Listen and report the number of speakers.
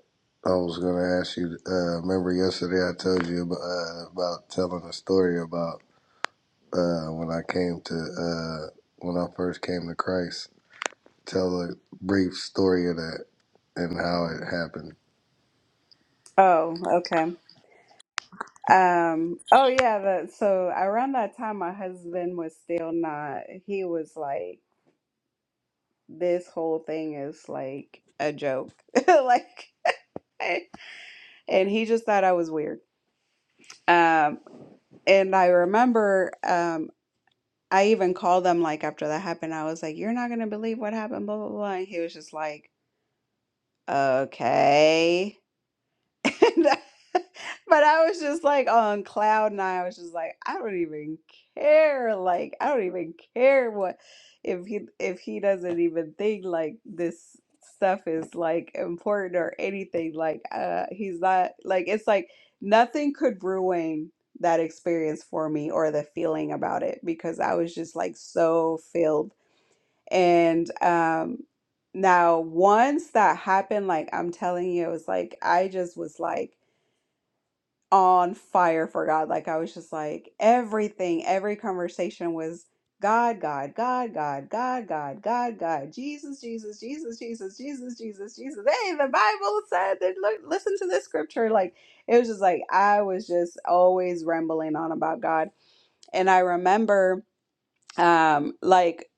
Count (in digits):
2